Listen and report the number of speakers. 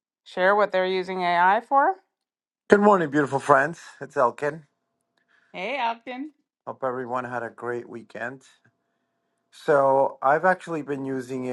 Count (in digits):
2